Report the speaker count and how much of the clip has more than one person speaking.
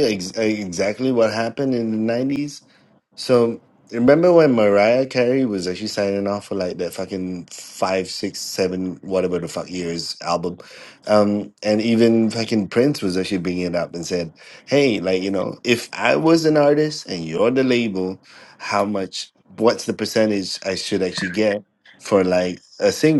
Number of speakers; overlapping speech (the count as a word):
one, no overlap